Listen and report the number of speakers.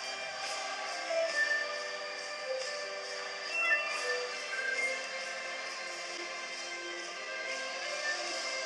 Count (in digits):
0